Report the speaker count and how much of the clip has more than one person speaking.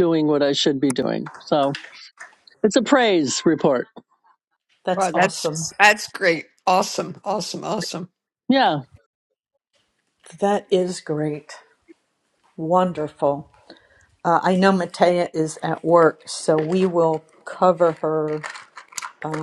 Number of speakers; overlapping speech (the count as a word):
three, about 3%